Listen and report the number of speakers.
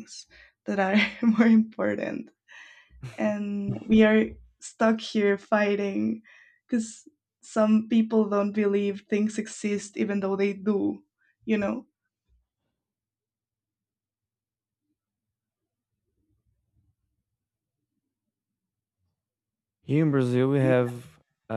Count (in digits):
2